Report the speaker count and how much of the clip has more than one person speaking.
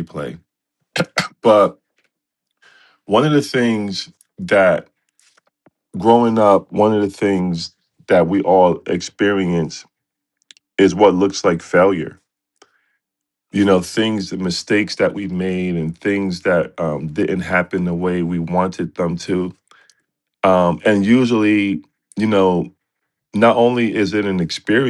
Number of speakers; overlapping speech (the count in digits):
1, no overlap